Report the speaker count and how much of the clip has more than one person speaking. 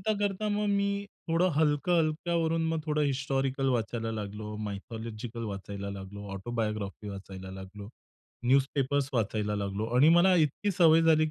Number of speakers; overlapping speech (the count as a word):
one, no overlap